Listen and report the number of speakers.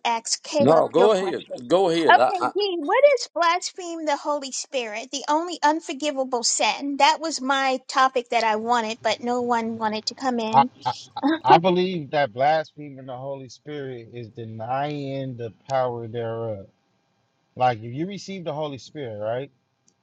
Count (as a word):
three